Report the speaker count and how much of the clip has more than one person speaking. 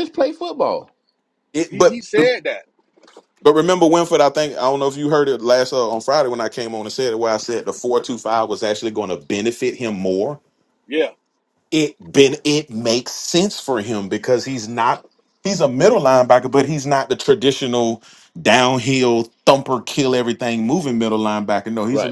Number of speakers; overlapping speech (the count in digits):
3, about 4%